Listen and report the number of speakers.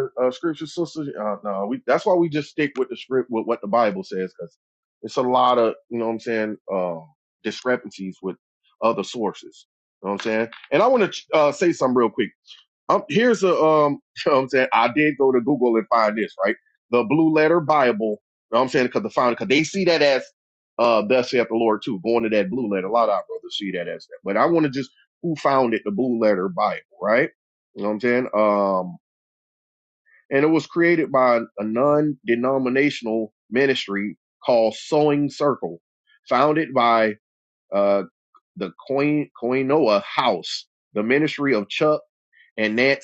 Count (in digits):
1